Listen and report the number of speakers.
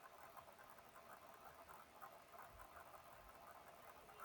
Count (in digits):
0